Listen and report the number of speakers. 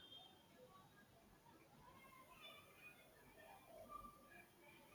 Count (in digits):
0